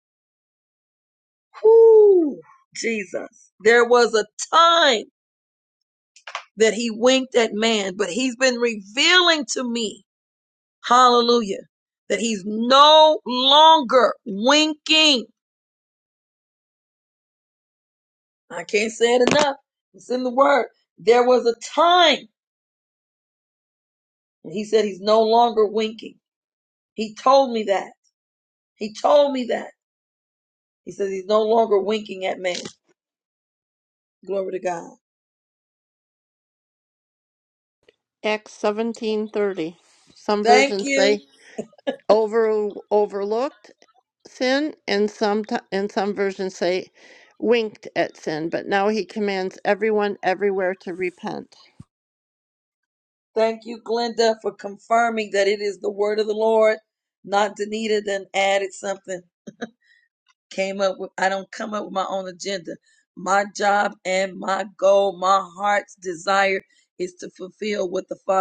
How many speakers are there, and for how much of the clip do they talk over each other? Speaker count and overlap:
2, about 1%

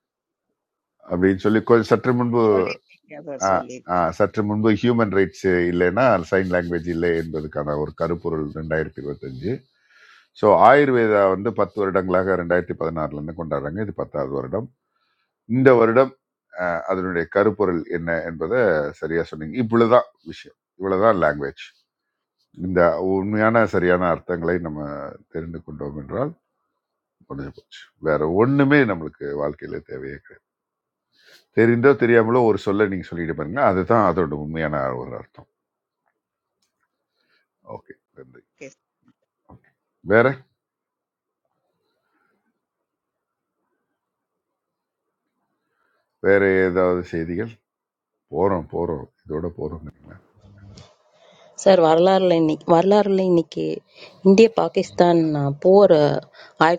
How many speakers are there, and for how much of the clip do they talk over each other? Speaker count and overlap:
3, about 1%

